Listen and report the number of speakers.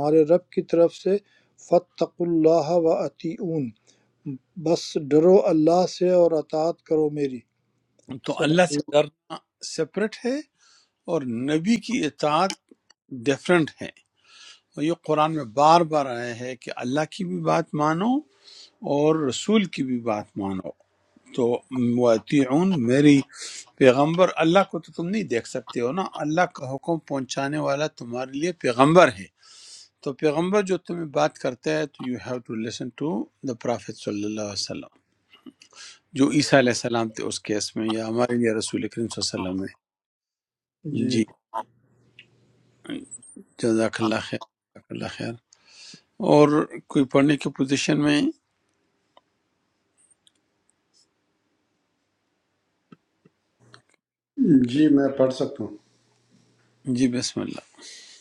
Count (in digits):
3